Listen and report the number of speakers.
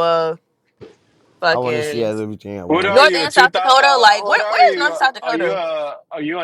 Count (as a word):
three